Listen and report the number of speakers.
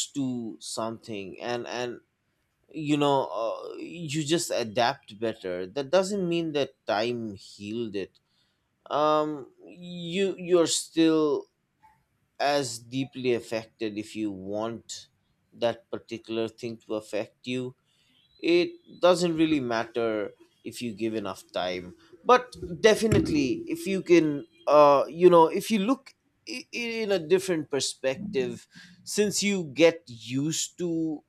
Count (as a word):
one